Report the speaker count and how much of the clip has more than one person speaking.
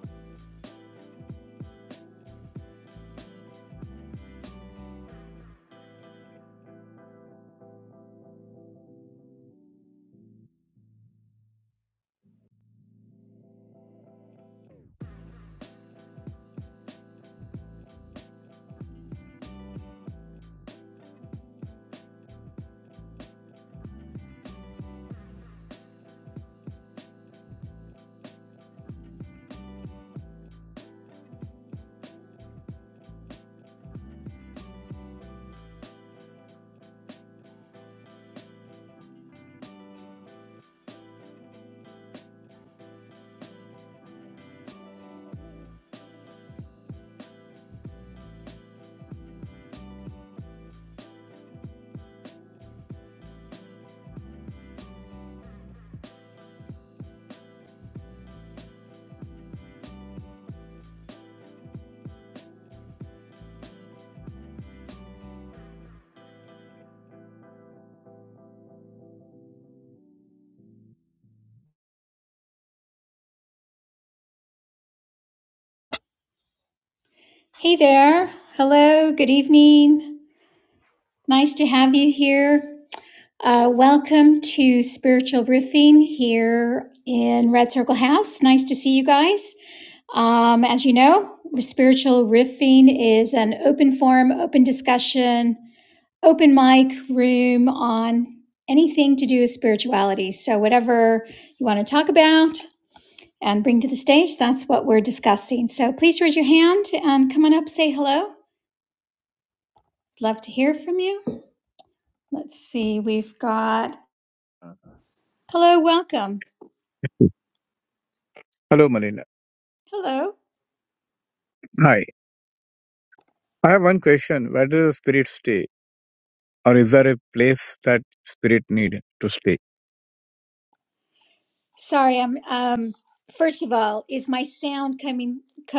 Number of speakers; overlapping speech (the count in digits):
2, no overlap